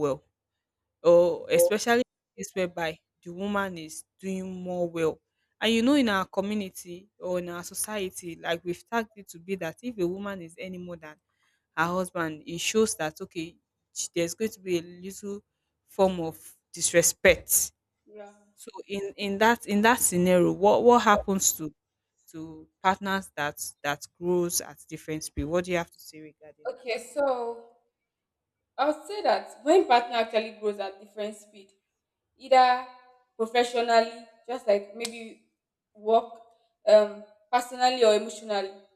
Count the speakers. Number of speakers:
2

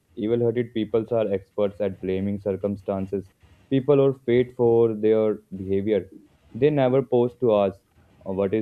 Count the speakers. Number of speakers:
1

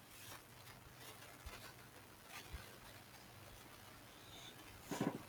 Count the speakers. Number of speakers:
0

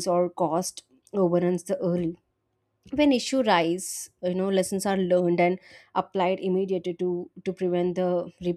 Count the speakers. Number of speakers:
1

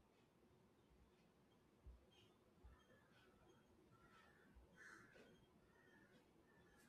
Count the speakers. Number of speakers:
0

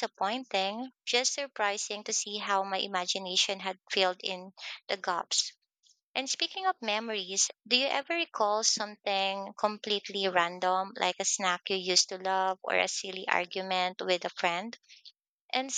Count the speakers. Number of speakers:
1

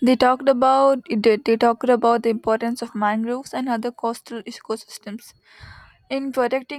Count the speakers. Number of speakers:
1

